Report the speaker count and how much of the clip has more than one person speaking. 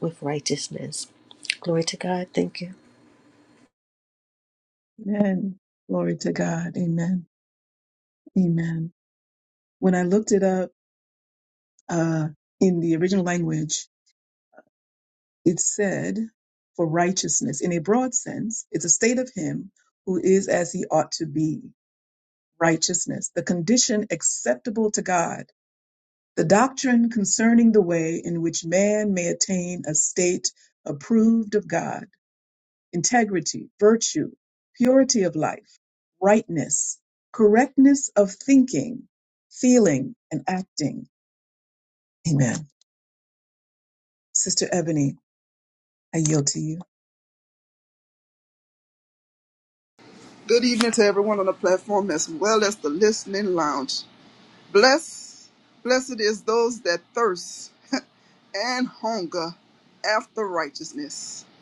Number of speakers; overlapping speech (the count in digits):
3, no overlap